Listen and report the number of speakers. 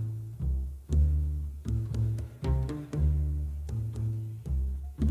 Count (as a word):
zero